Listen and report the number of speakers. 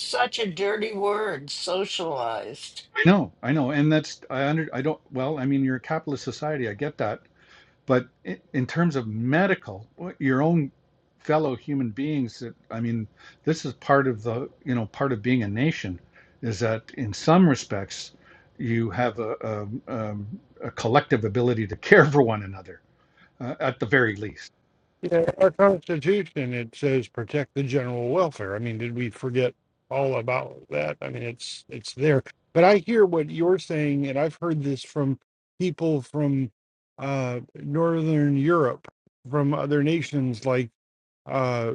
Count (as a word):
three